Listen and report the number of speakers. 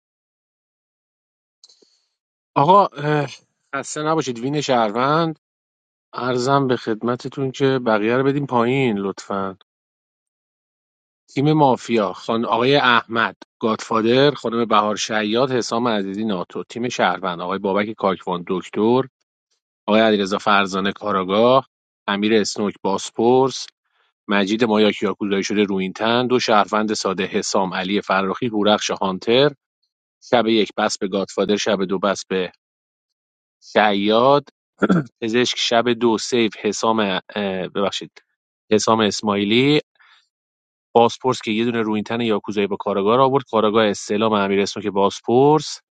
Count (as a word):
one